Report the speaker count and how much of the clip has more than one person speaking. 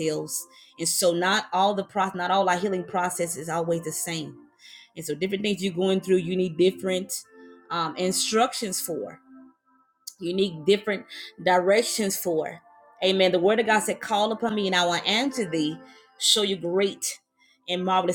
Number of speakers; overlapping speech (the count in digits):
1, no overlap